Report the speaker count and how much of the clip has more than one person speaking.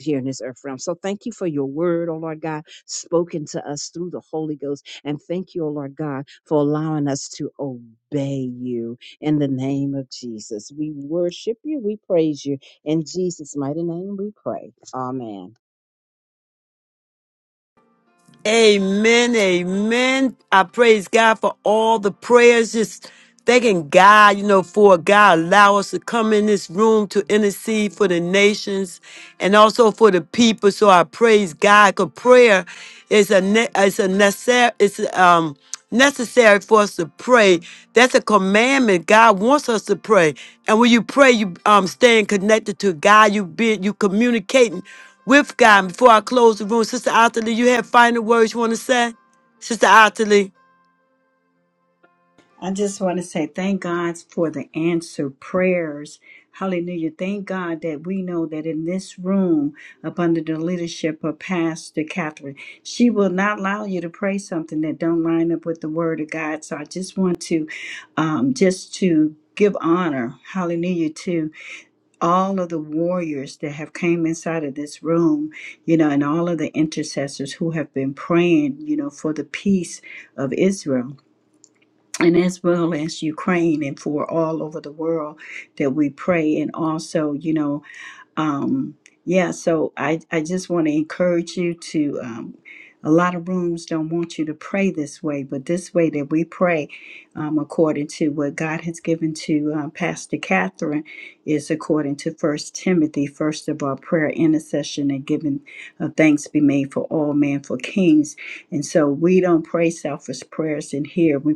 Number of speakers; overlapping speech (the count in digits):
3, no overlap